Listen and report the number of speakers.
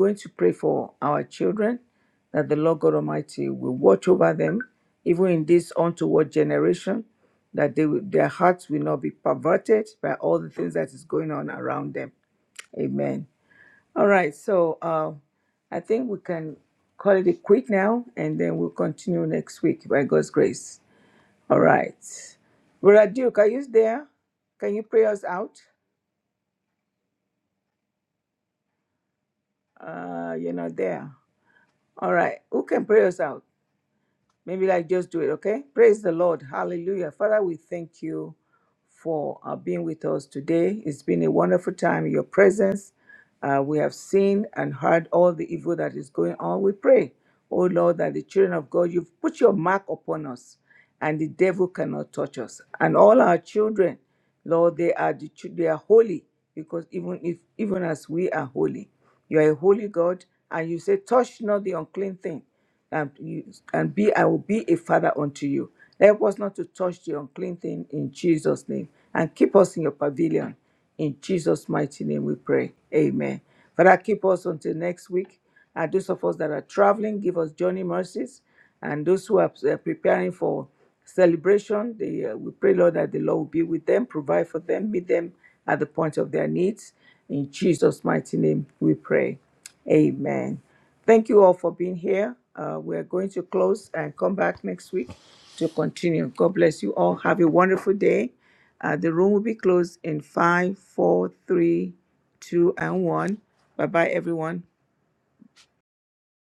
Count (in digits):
1